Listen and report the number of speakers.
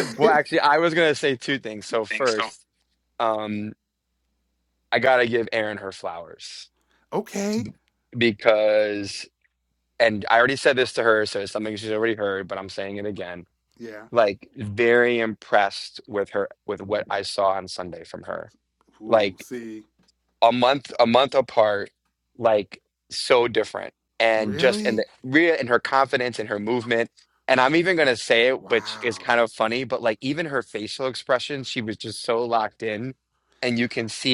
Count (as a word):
two